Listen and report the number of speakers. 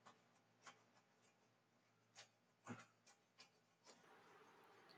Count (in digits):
0